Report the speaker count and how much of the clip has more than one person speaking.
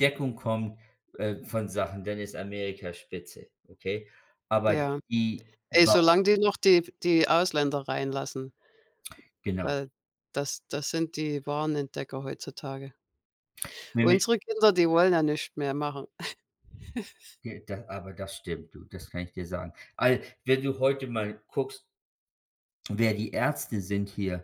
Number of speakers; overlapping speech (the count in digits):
2, about 4%